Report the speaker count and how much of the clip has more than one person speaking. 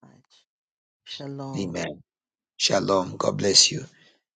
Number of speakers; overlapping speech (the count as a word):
two, about 7%